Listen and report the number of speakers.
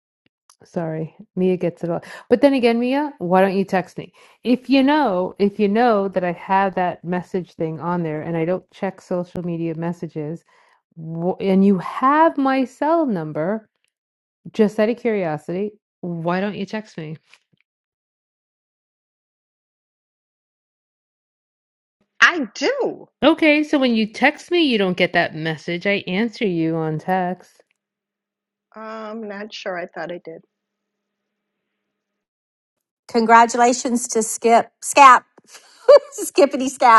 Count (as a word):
three